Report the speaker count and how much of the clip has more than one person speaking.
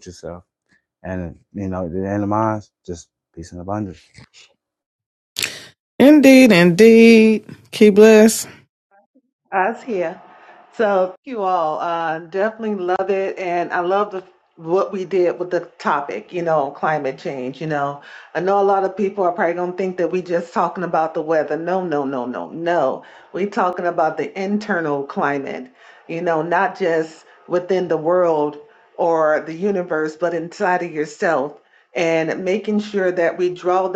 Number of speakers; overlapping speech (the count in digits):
3, no overlap